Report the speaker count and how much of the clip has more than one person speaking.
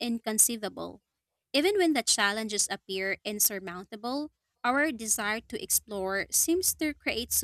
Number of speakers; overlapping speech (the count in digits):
1, no overlap